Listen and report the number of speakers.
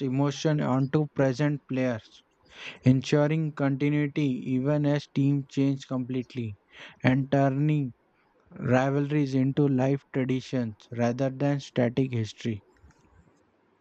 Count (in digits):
1